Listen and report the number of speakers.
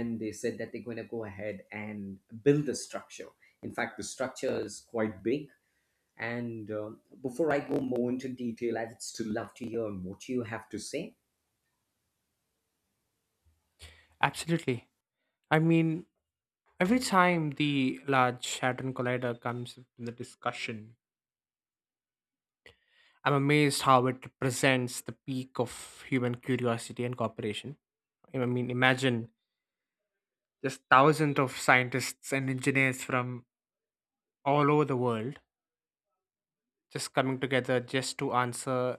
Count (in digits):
2